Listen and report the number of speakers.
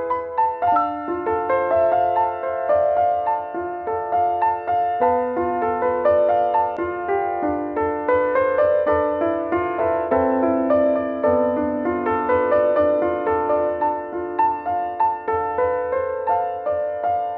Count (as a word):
zero